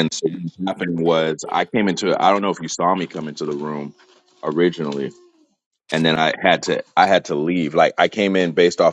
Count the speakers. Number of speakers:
one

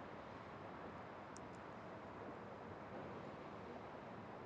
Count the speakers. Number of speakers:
zero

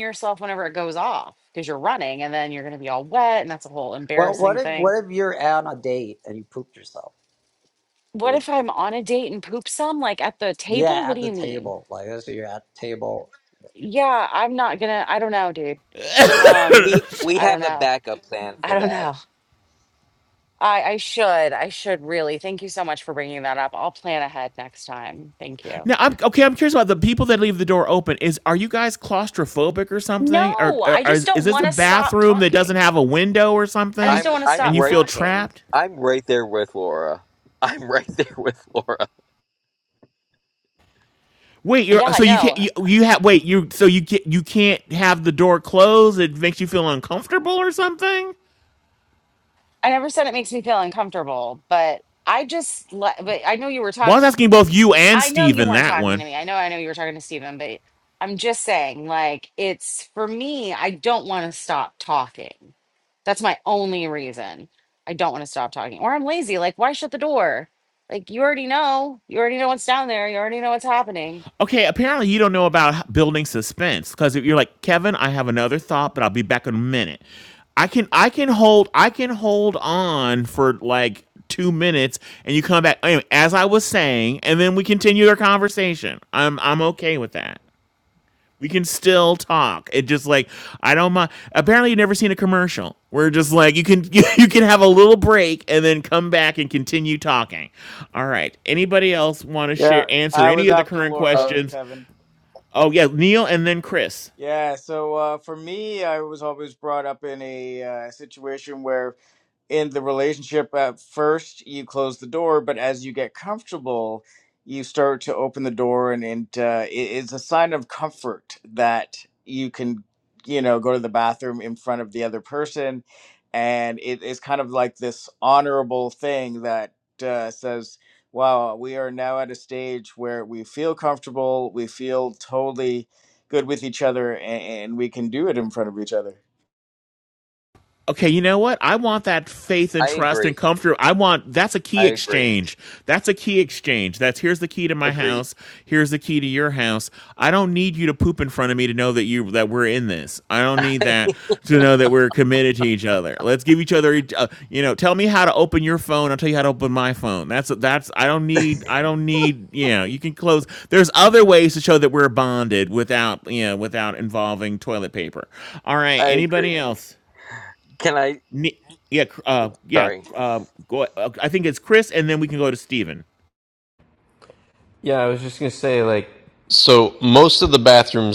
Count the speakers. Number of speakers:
six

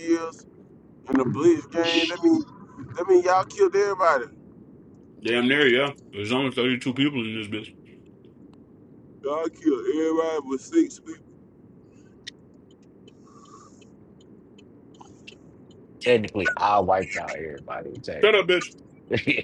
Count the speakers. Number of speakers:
three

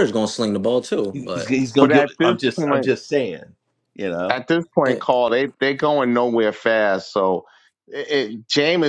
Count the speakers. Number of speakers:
three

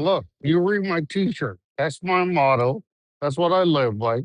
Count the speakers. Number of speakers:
one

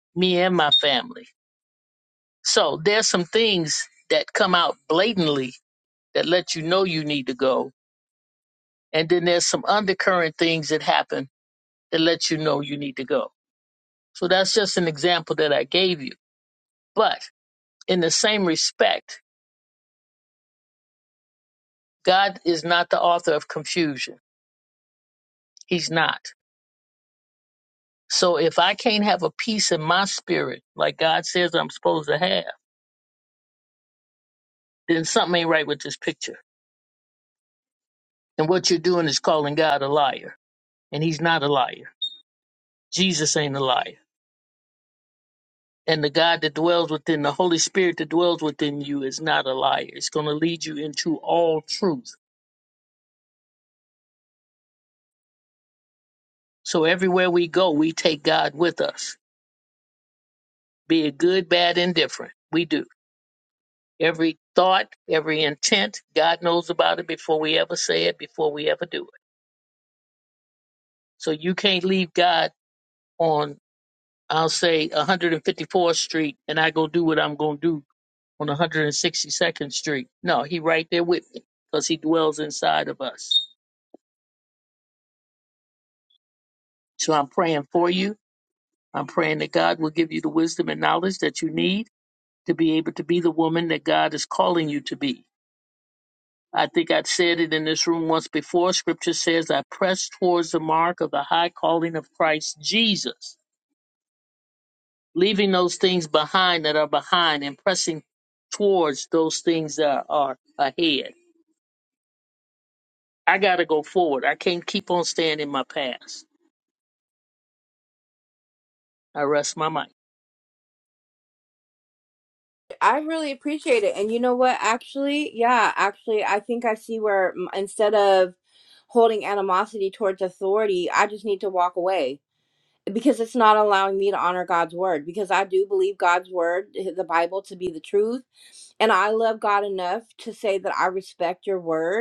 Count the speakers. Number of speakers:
two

